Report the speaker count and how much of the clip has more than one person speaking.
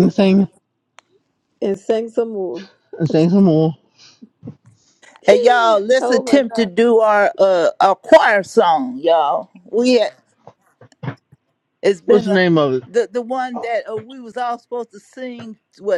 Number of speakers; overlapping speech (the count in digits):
3, about 7%